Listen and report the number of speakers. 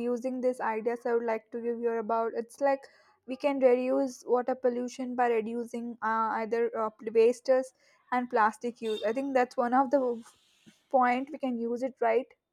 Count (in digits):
1